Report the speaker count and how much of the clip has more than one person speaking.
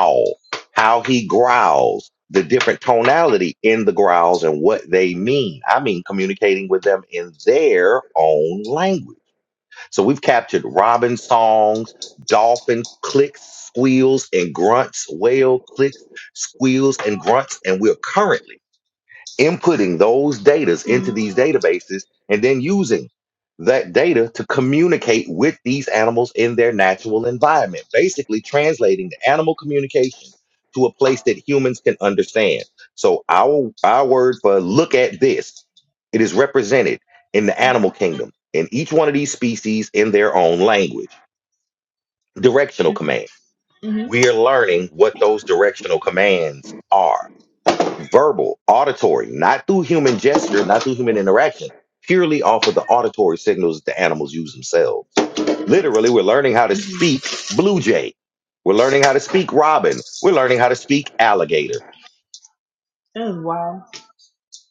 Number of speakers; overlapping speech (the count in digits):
2, under 1%